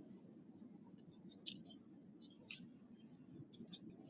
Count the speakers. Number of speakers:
0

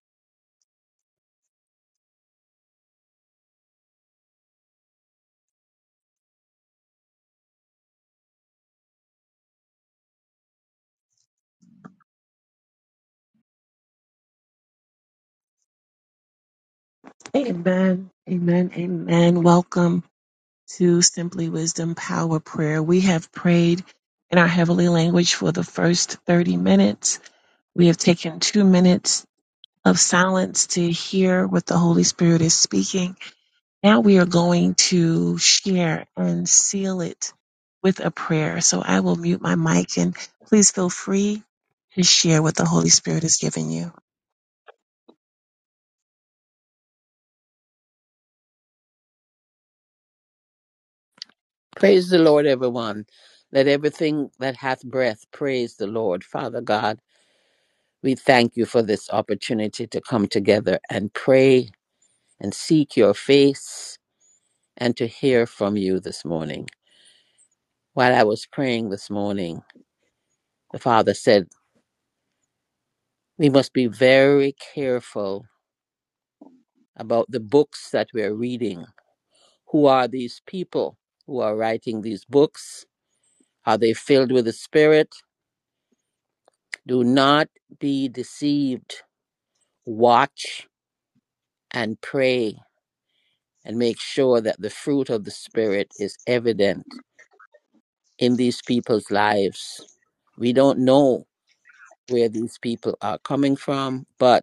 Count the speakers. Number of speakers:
2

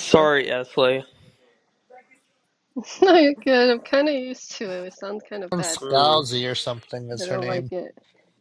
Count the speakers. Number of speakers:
3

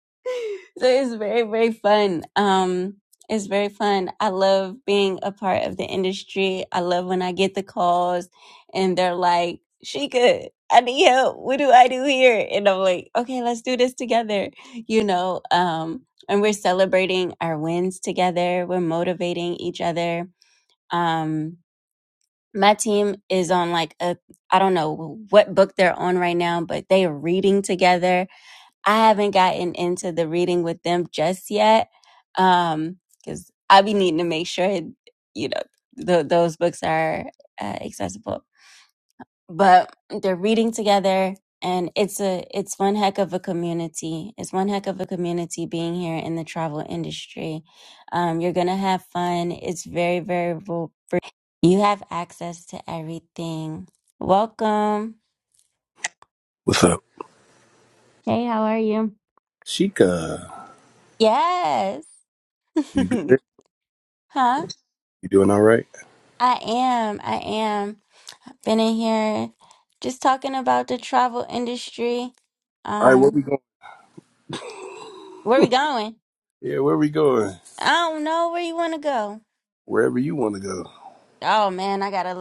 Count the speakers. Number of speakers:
2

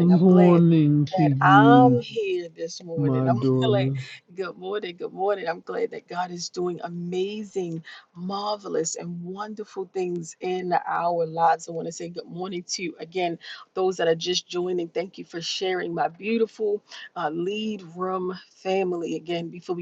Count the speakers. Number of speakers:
2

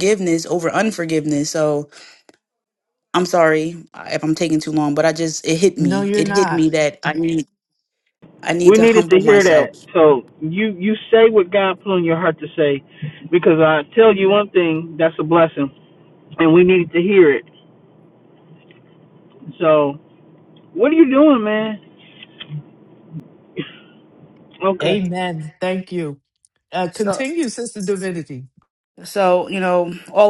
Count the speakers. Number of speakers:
3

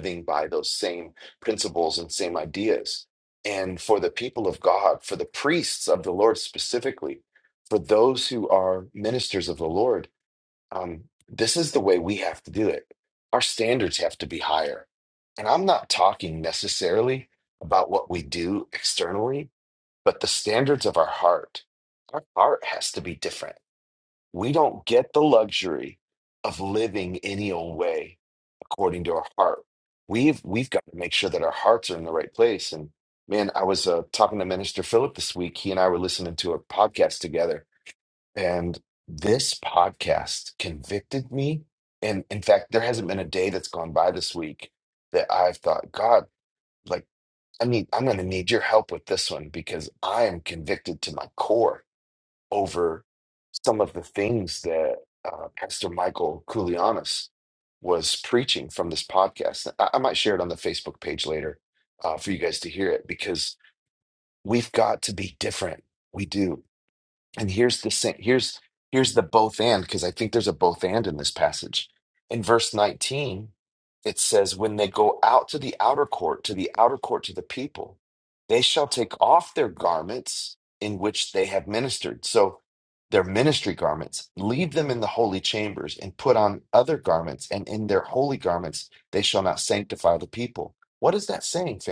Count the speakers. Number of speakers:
1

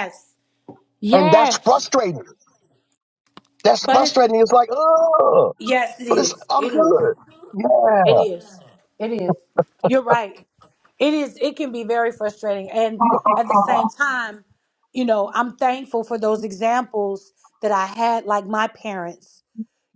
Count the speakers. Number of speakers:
2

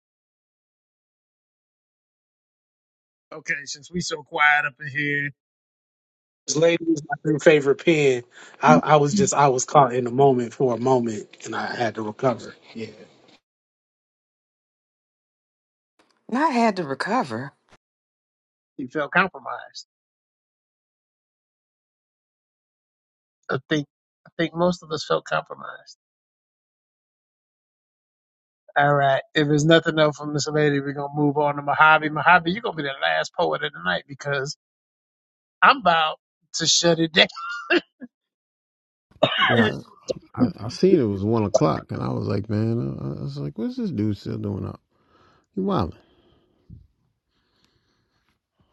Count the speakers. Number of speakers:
4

